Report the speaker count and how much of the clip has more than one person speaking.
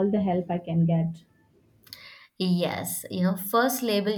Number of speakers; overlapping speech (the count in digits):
2, no overlap